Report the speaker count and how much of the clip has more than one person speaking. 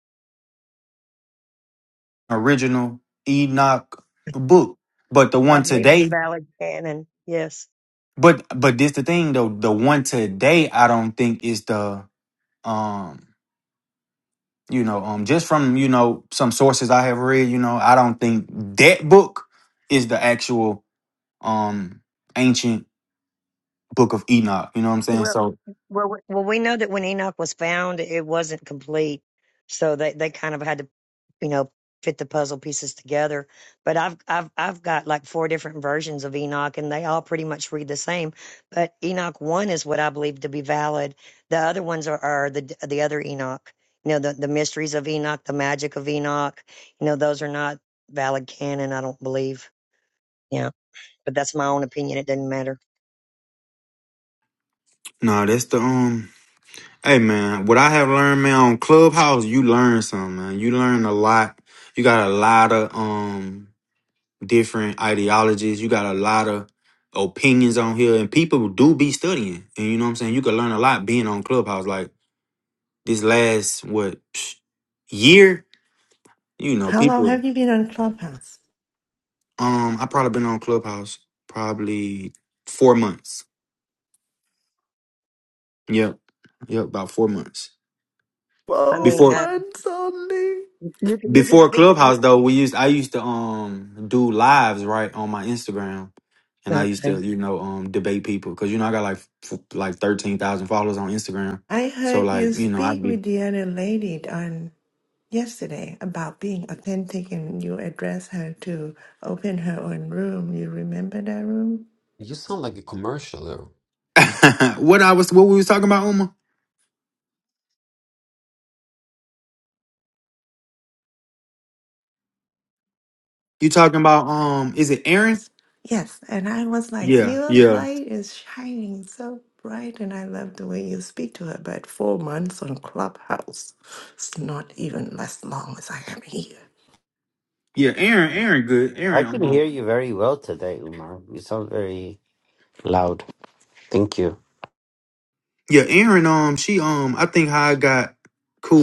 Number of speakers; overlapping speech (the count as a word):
five, about 4%